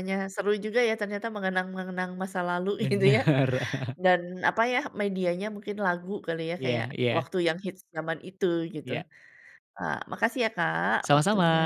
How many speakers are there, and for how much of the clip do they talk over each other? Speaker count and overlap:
2, about 14%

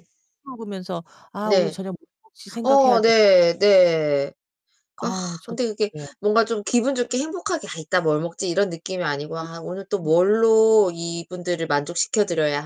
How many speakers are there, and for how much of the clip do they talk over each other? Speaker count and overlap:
2, about 11%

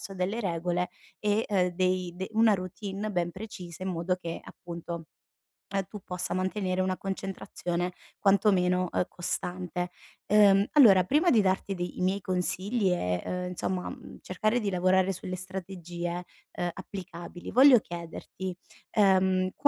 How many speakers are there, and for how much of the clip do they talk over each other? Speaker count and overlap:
1, no overlap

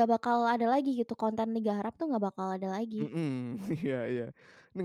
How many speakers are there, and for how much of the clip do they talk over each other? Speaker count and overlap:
2, about 1%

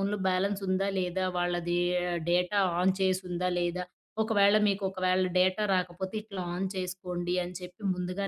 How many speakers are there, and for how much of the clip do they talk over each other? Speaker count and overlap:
1, no overlap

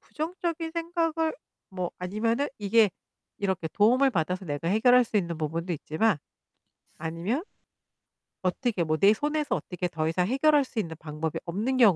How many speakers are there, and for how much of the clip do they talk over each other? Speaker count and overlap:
1, no overlap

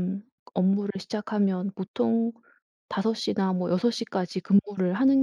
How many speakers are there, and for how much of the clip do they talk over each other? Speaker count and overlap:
1, no overlap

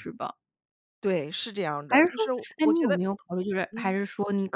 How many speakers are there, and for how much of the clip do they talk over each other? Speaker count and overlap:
2, about 22%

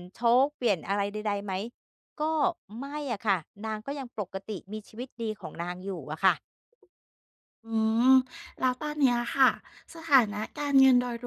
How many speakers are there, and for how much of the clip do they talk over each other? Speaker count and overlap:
2, no overlap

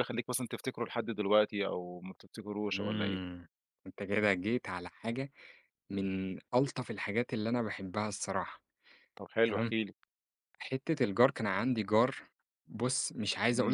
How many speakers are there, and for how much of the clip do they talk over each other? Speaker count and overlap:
2, about 7%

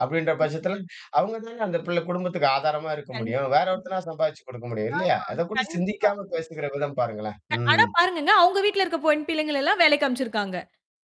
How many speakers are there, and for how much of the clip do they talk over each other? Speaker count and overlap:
2, about 18%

